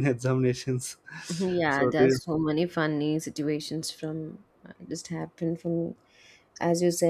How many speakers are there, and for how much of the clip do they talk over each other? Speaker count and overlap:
2, about 6%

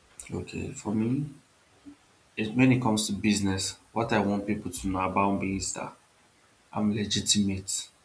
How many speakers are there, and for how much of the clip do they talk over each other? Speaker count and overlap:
1, no overlap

